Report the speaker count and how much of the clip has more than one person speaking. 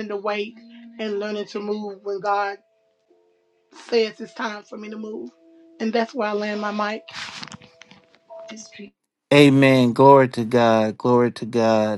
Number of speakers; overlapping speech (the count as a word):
two, no overlap